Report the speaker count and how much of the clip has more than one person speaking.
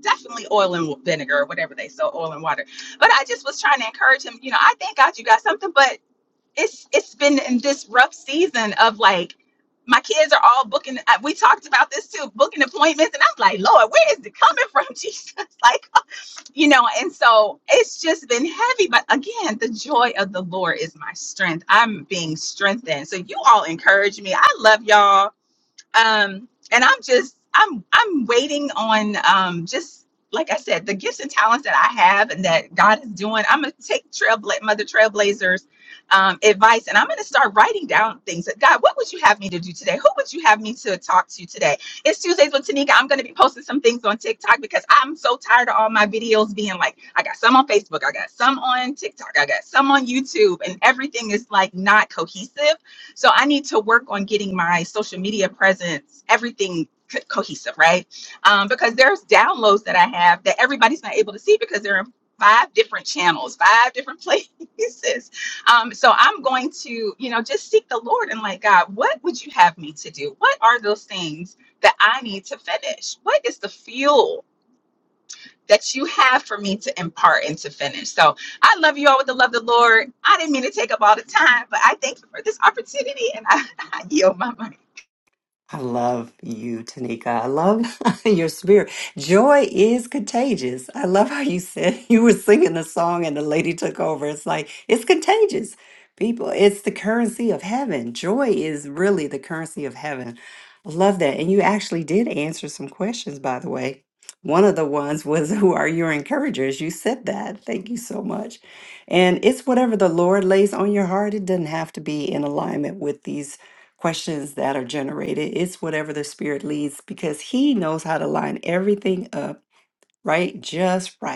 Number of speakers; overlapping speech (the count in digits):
2, no overlap